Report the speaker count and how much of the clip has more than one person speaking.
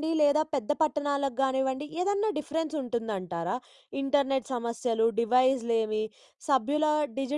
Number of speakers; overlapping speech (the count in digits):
1, no overlap